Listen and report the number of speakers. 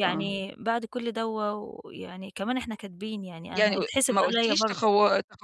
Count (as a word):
two